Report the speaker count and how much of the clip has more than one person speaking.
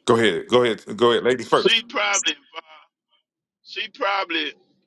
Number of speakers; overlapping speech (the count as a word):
two, about 4%